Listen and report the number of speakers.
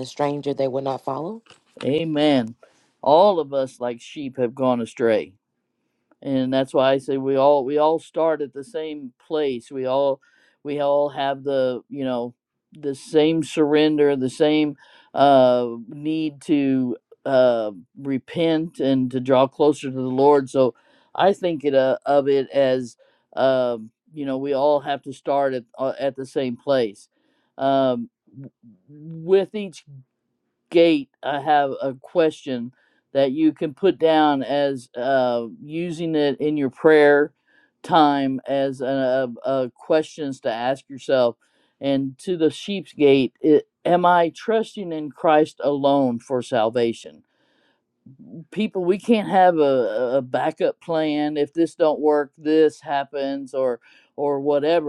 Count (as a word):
two